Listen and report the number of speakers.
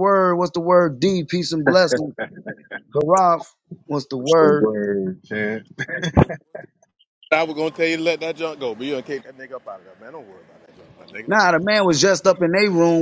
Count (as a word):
three